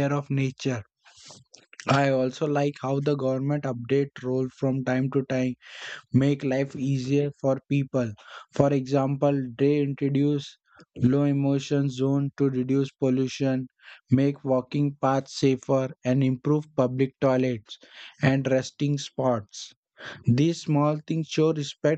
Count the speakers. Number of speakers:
1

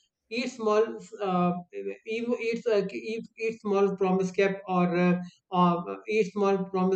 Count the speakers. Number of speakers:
1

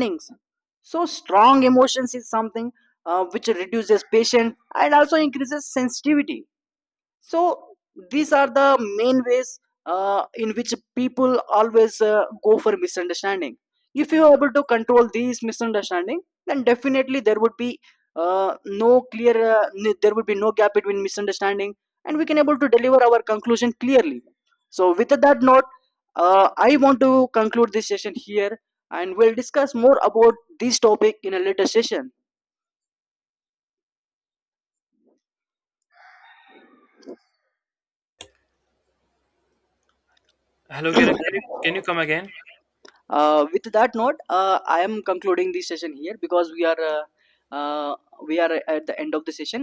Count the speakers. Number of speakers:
2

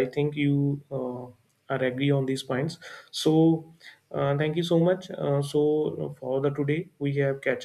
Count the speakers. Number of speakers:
1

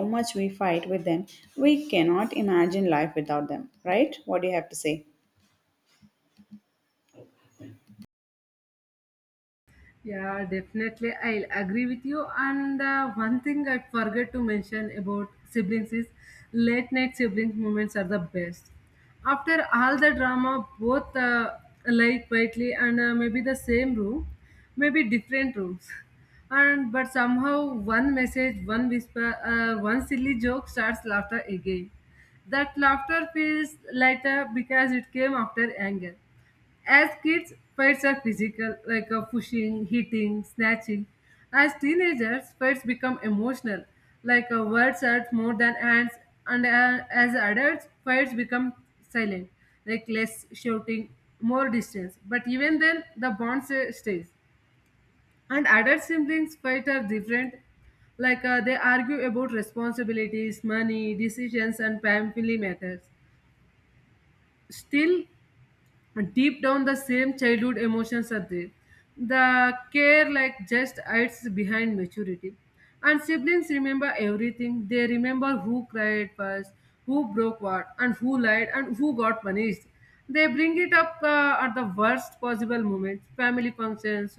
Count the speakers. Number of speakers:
2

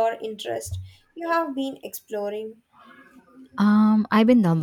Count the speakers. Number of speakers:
2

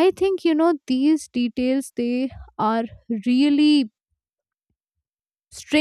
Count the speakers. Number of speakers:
1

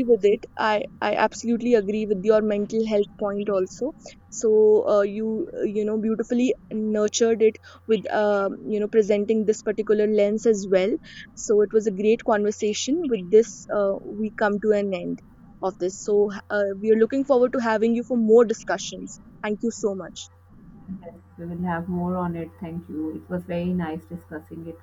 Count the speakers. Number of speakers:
2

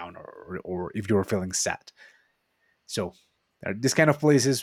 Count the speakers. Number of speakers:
1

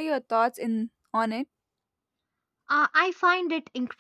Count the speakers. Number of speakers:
2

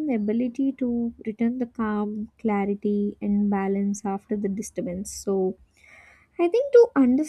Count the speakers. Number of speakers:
1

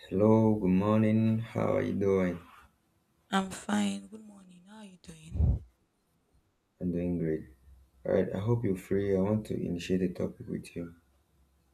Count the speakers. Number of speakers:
2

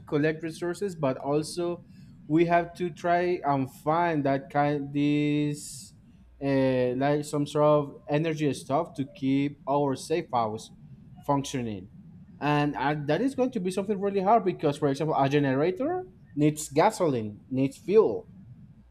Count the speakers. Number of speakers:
1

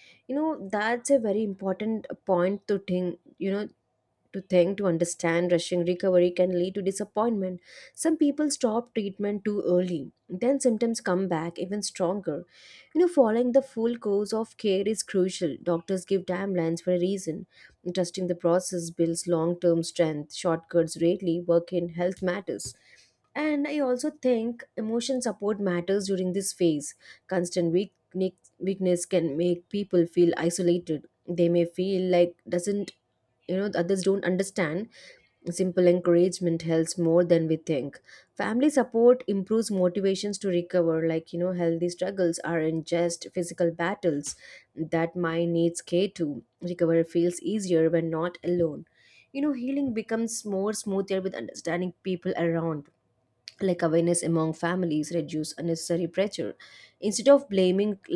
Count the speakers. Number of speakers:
1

